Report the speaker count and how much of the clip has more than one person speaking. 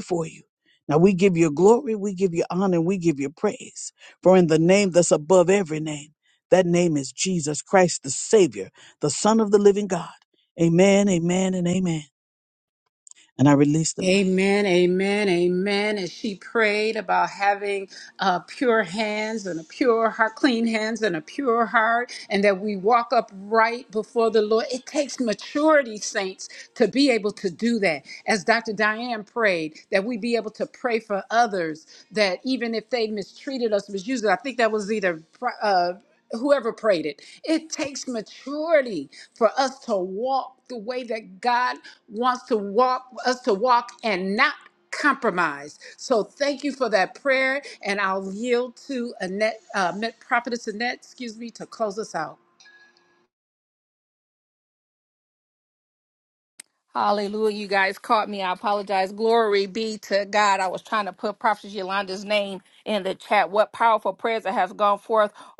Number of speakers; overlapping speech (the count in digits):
3, under 1%